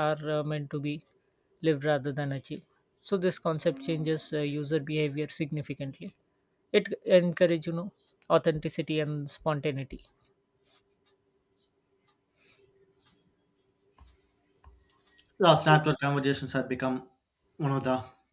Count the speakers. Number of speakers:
2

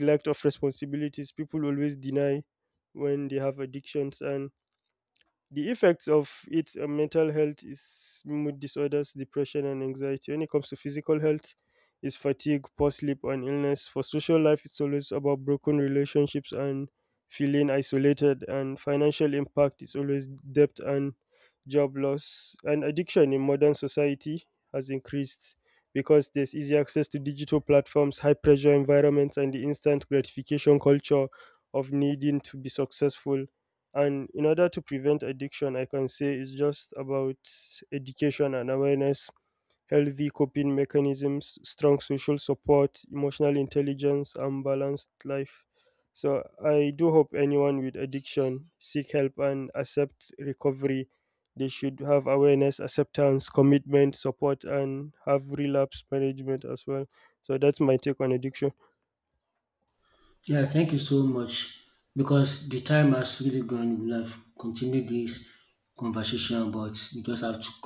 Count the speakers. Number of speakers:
2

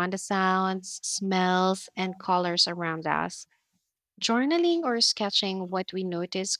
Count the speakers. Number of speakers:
1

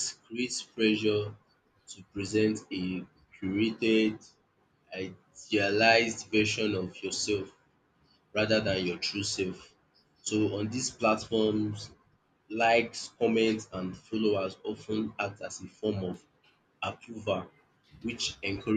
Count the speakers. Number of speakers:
1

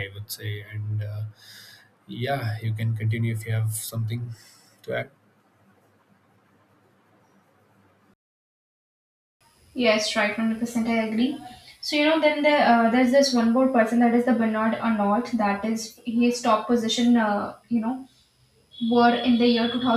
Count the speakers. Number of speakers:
2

